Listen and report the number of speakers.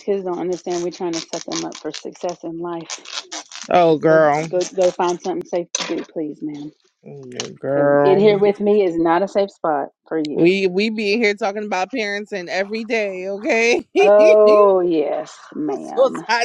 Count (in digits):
2